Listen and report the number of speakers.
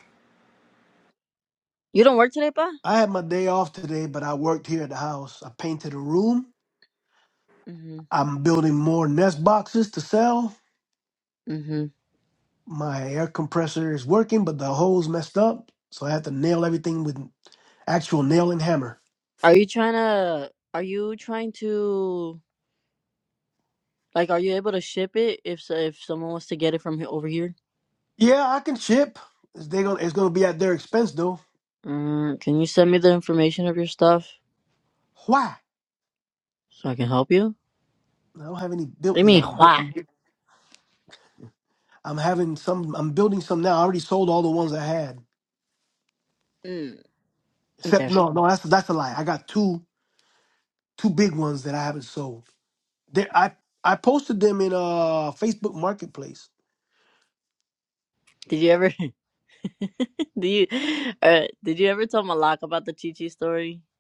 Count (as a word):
two